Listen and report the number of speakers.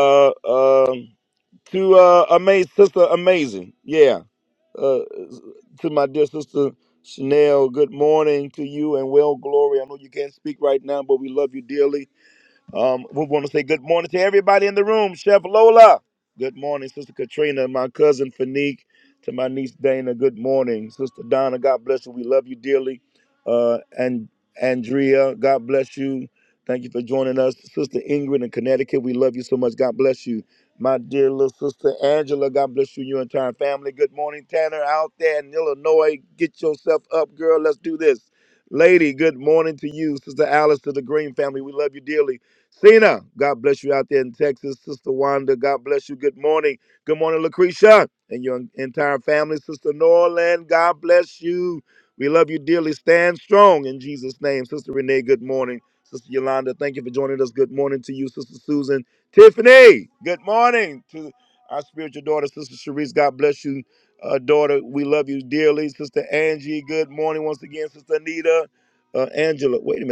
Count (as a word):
one